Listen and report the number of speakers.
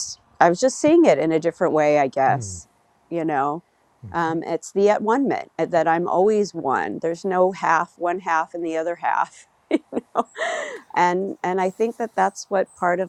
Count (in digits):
1